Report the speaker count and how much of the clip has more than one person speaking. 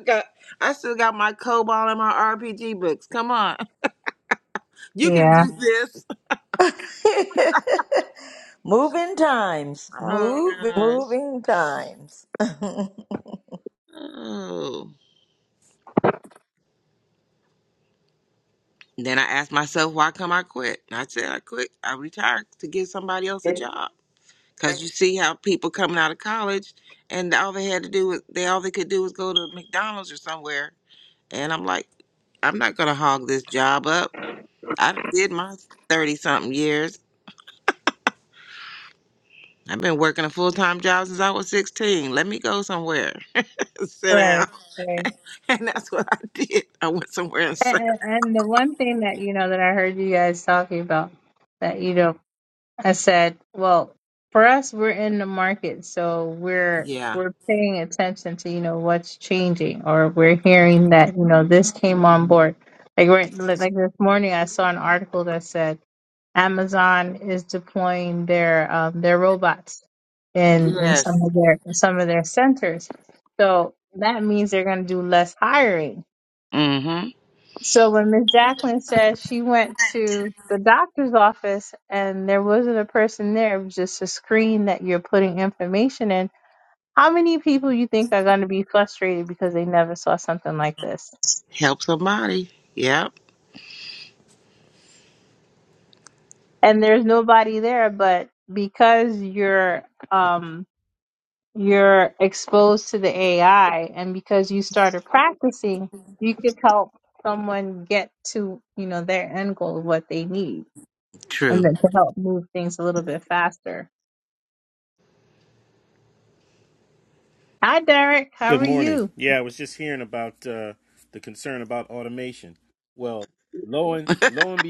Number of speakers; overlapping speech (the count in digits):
4, about 3%